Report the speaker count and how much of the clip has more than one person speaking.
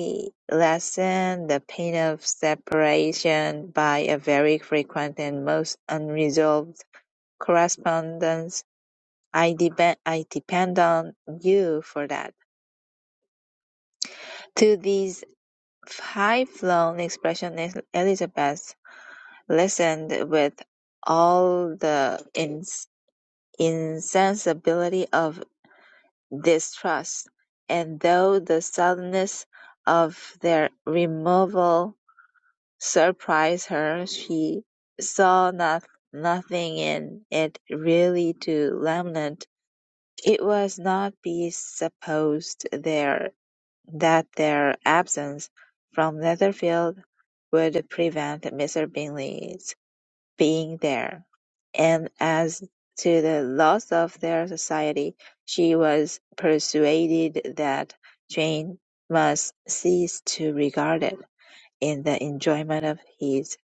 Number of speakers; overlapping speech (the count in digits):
1, no overlap